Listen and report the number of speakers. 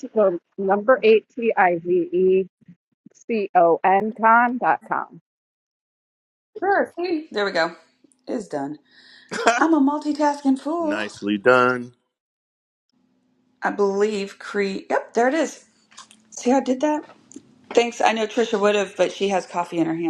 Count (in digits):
3